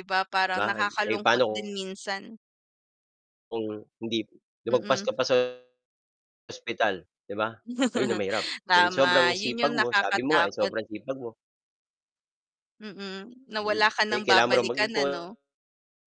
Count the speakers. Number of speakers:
2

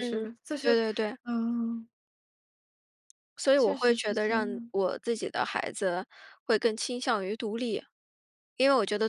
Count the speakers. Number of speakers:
2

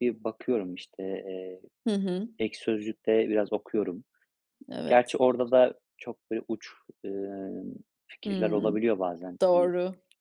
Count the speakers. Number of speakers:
2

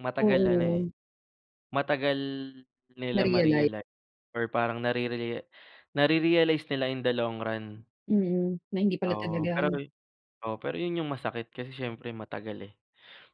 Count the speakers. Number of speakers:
2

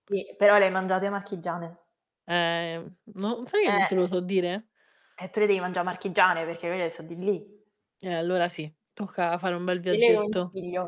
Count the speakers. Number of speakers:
2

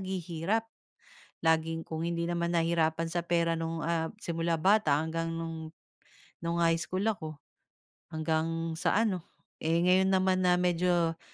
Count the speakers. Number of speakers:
1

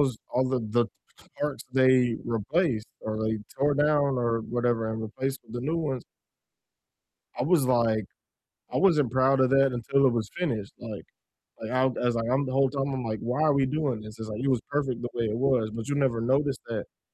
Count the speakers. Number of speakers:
1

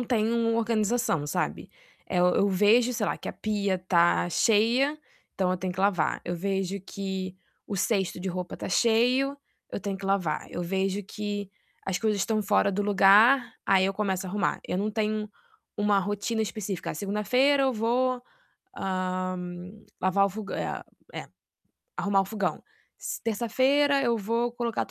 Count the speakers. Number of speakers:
1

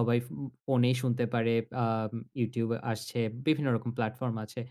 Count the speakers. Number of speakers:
1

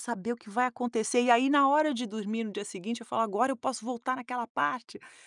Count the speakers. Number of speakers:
1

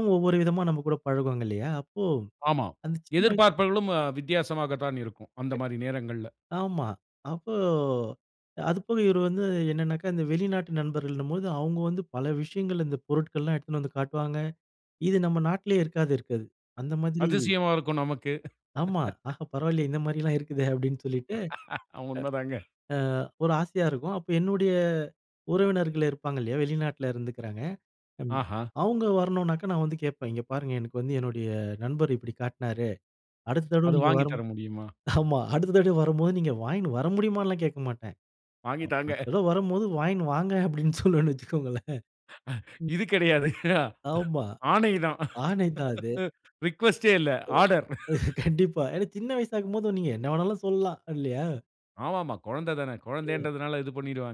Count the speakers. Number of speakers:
2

